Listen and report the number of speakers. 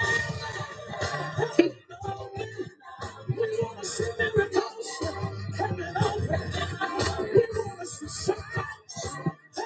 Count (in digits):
0